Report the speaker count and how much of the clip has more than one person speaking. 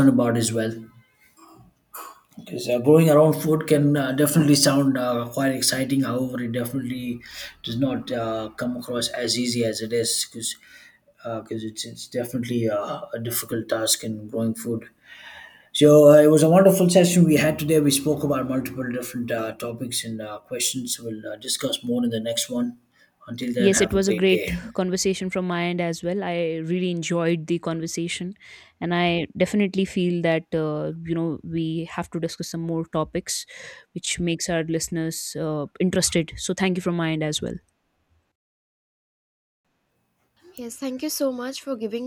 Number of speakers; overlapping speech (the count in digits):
3, about 2%